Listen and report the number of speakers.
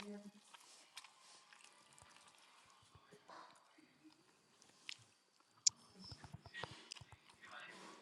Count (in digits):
0